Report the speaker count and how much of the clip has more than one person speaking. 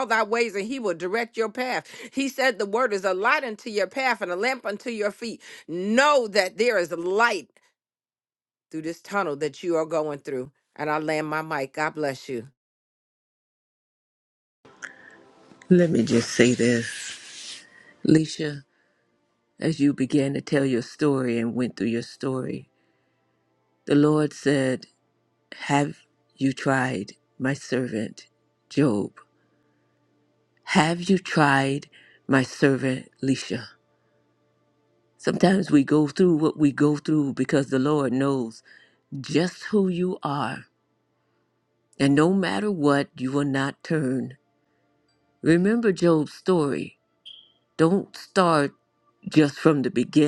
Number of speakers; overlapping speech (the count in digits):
2, no overlap